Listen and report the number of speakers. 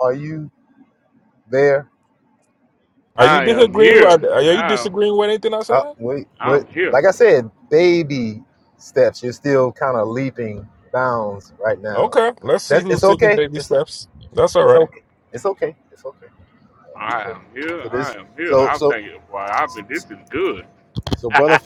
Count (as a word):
three